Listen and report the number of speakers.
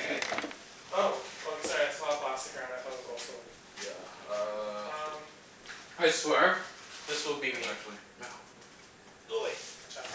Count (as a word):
three